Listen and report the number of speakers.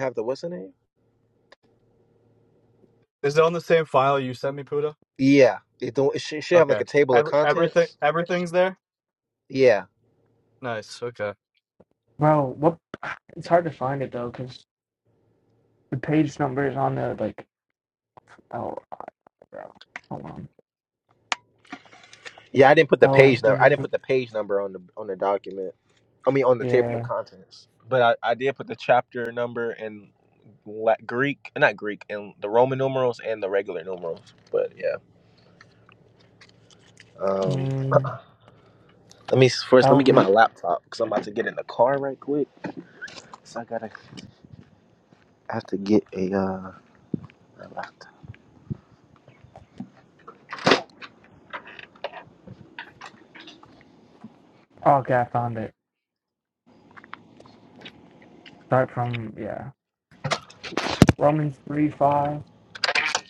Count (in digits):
3